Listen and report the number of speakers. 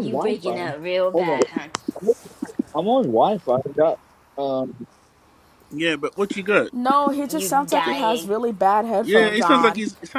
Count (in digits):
4